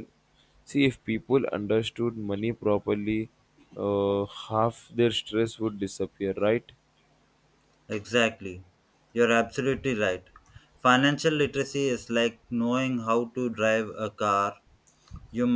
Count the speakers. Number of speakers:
two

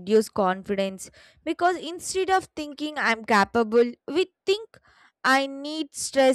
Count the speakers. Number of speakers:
one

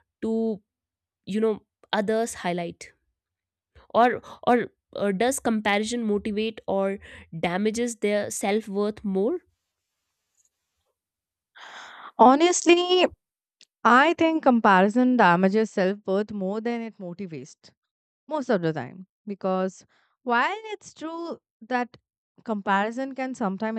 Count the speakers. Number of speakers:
two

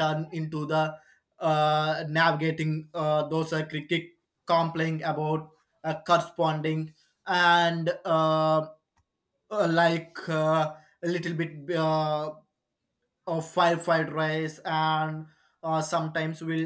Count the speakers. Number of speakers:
one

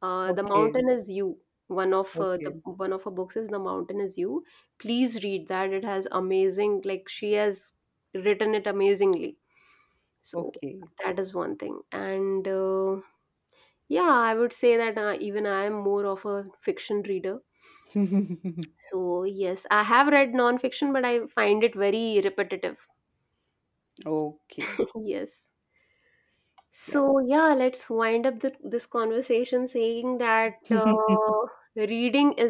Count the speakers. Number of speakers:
two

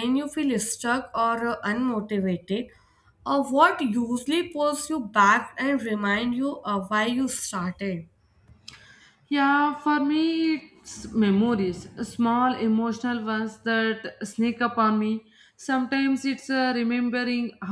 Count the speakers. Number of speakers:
two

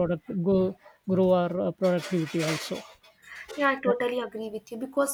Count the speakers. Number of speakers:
two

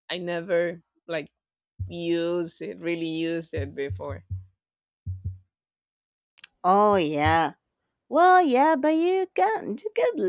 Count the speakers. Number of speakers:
two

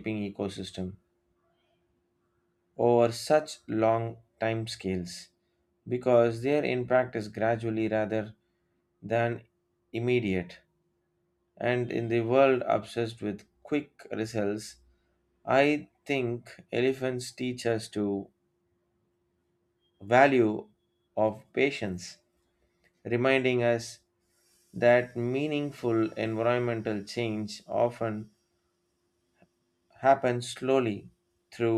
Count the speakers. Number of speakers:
one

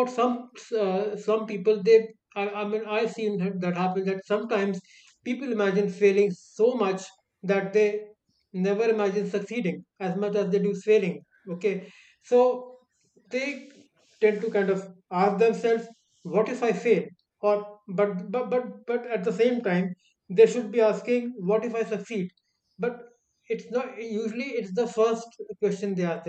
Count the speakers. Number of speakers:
one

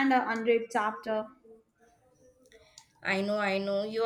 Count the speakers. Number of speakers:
two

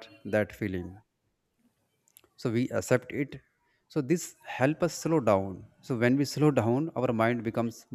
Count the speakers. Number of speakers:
one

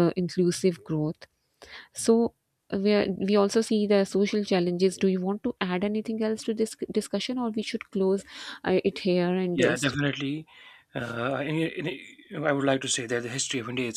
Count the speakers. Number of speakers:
two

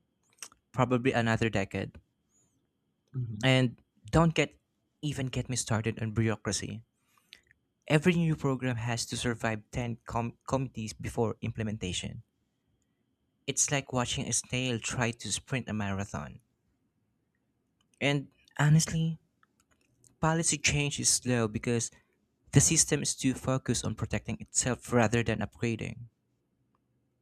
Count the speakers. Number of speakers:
one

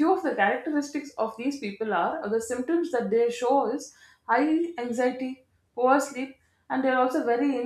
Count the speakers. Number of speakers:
one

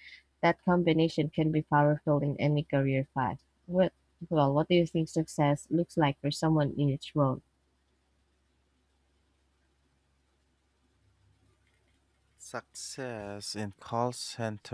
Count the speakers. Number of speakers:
two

